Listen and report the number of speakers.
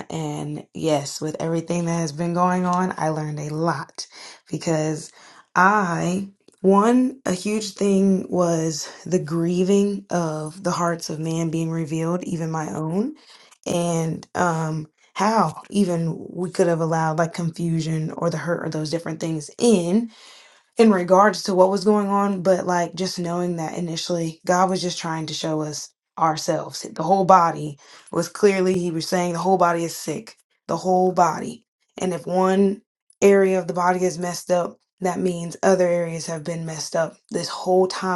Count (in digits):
1